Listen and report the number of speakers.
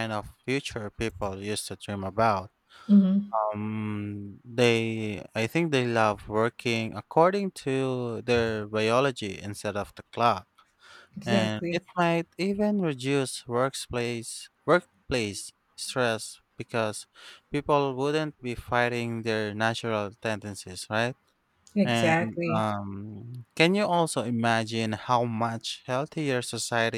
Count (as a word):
two